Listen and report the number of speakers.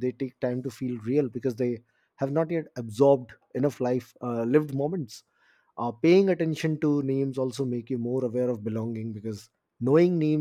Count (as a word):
one